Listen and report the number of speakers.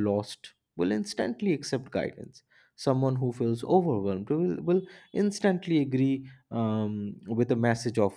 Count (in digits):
1